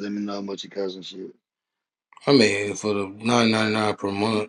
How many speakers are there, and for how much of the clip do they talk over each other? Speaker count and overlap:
2, no overlap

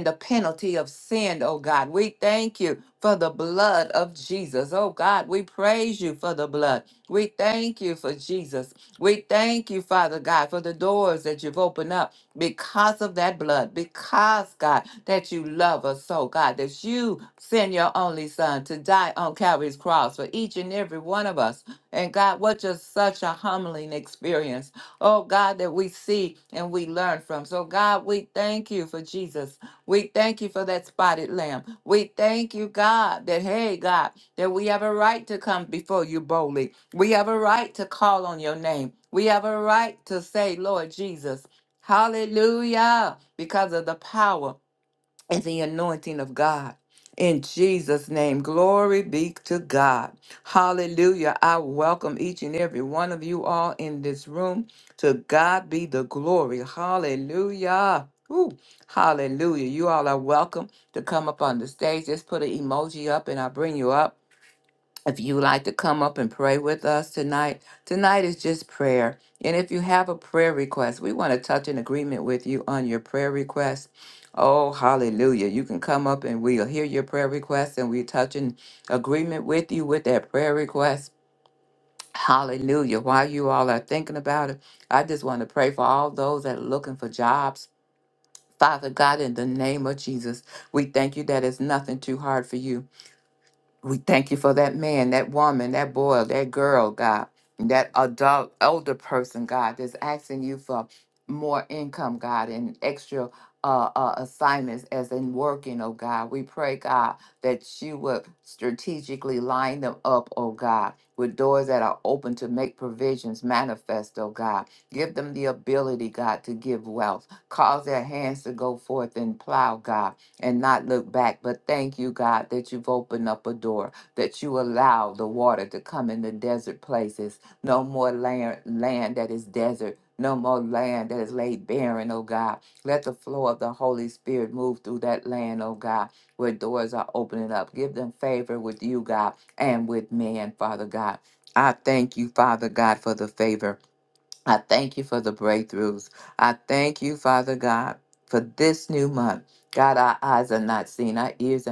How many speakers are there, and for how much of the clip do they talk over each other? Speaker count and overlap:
1, no overlap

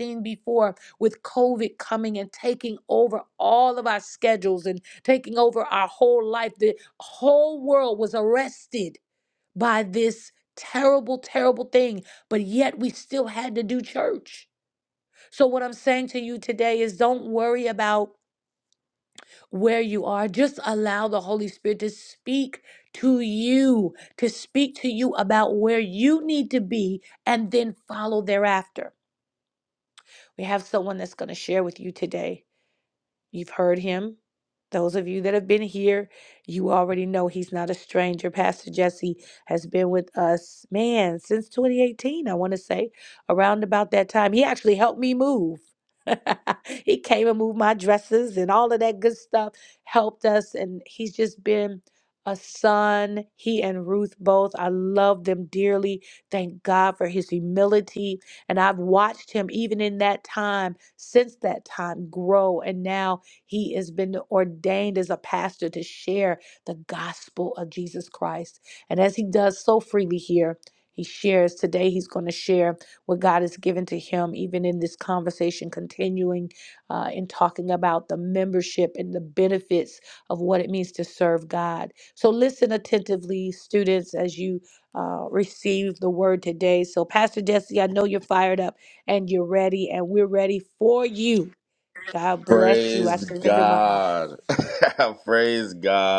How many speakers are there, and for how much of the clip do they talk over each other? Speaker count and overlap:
2, about 2%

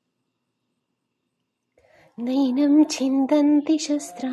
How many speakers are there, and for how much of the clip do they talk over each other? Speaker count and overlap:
1, no overlap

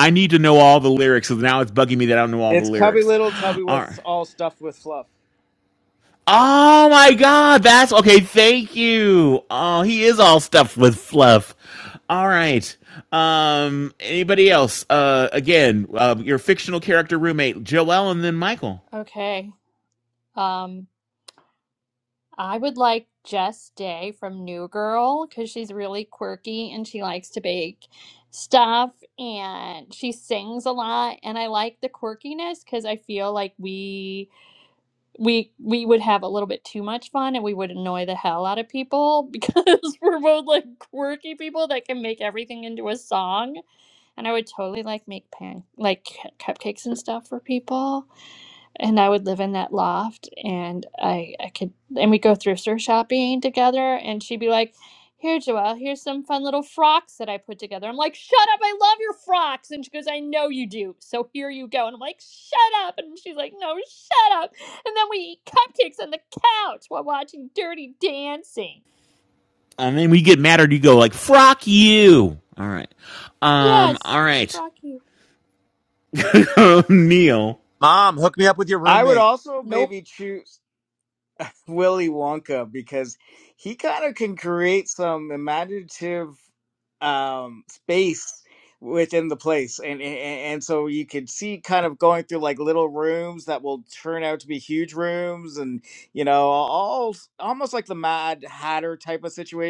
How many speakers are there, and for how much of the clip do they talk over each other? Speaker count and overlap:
4, about 2%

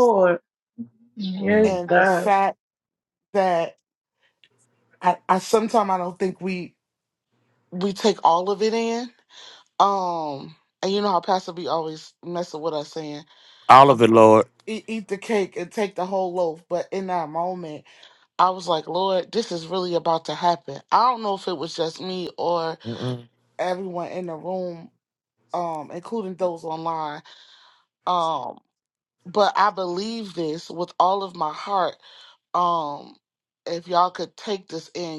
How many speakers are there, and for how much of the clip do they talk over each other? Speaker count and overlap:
3, about 3%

